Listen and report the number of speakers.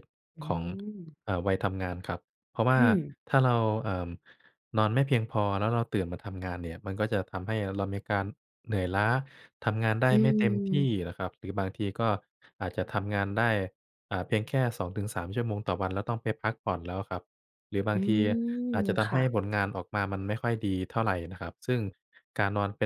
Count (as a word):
two